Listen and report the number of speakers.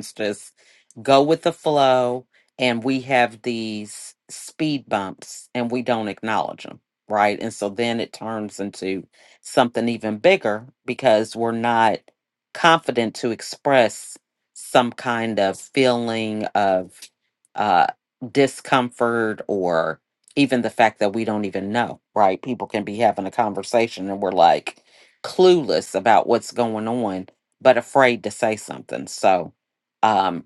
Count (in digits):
1